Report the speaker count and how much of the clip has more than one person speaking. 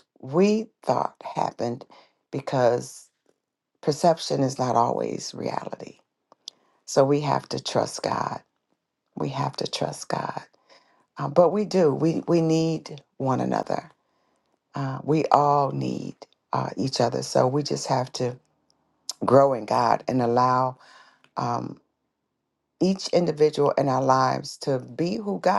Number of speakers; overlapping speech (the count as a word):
one, no overlap